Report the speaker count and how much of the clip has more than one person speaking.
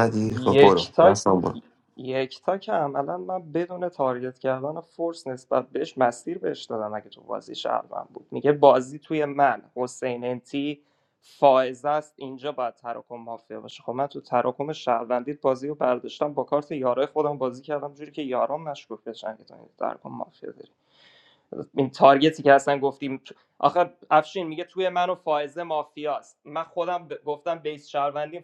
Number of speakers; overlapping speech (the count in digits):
2, about 3%